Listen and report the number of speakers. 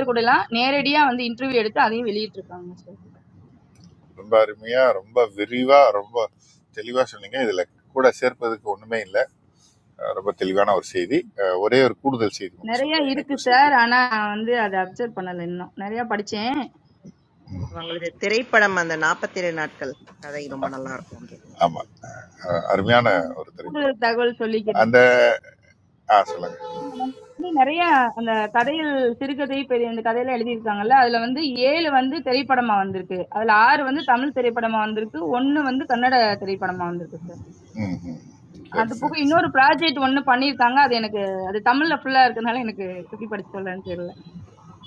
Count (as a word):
three